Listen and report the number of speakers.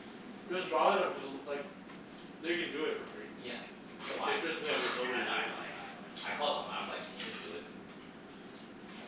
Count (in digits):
2